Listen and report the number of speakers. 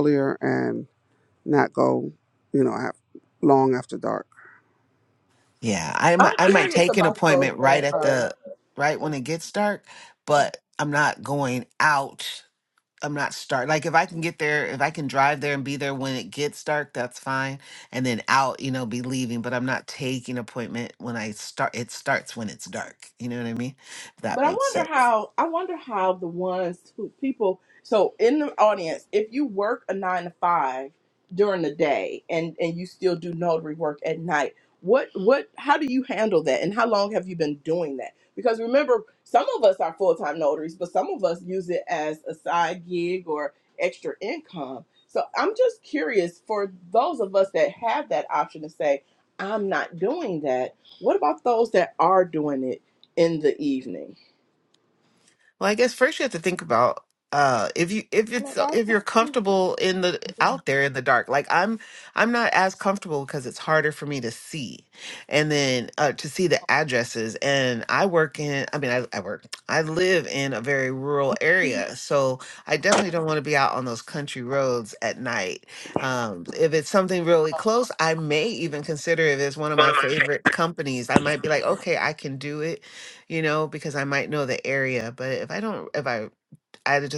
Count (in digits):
3